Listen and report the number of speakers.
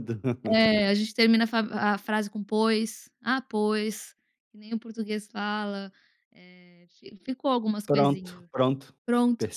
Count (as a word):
two